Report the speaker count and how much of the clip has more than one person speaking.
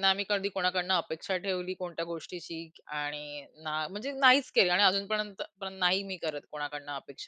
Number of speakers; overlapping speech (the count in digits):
1, no overlap